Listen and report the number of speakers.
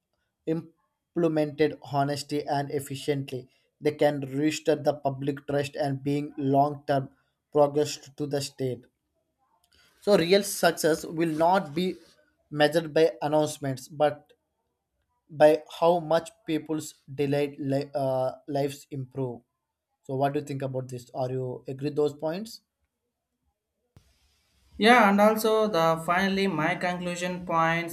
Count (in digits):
2